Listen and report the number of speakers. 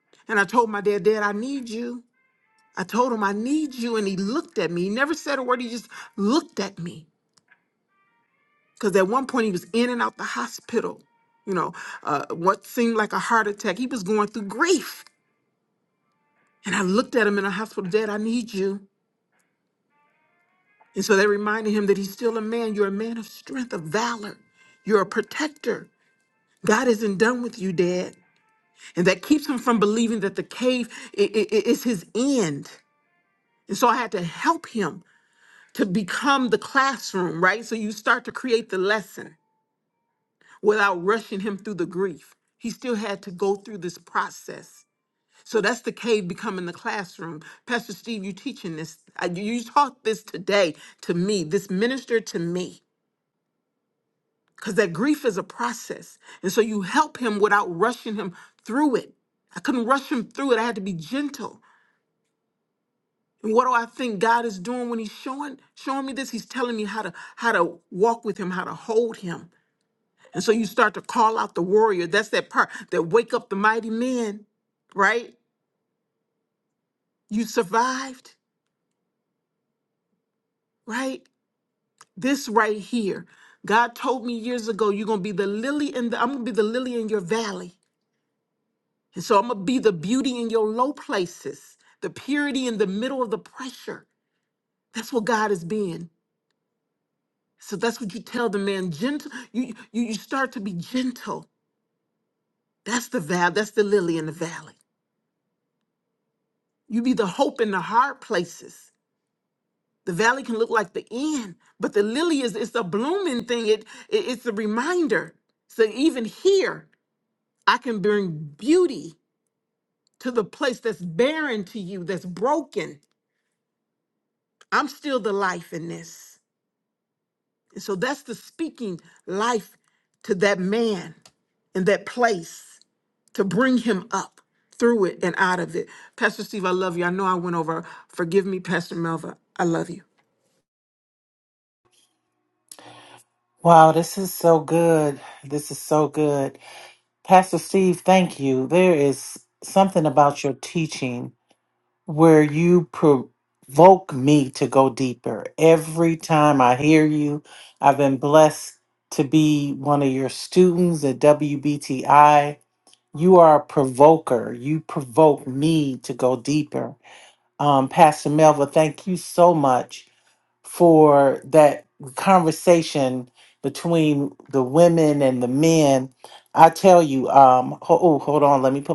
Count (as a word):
two